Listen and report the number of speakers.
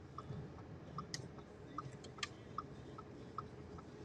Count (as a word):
zero